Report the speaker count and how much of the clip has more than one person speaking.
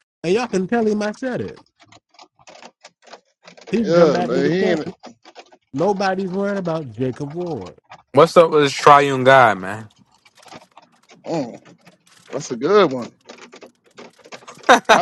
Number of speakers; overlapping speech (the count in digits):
3, about 8%